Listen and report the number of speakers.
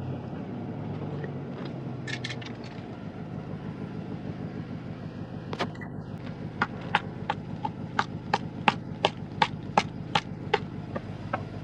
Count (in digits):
0